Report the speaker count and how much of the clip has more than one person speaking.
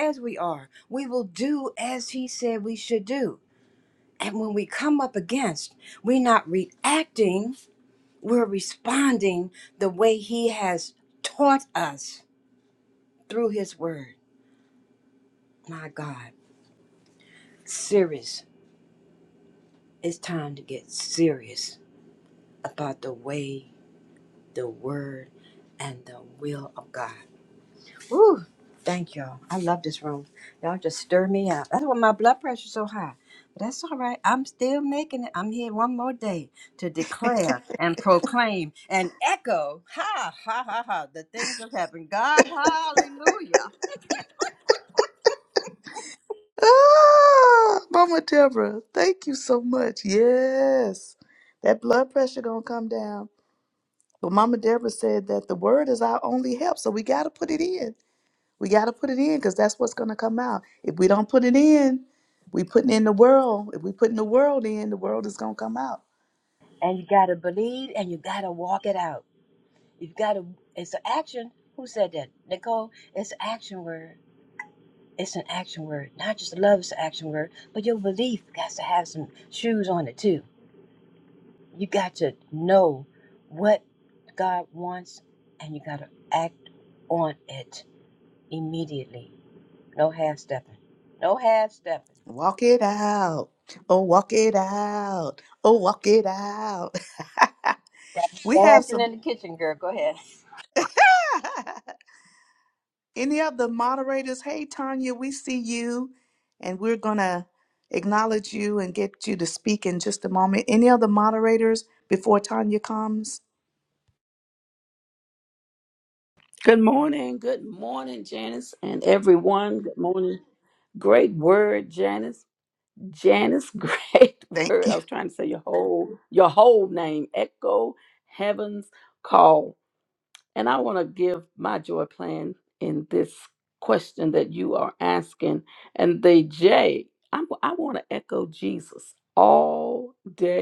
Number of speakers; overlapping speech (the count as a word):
three, about 1%